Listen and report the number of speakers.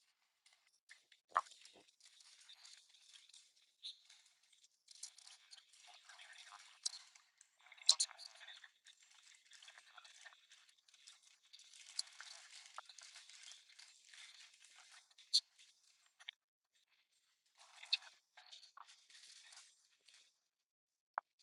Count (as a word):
zero